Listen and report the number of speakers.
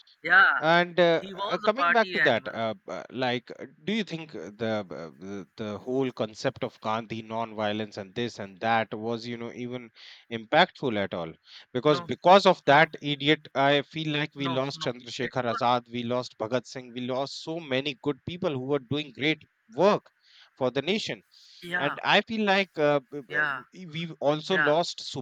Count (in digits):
2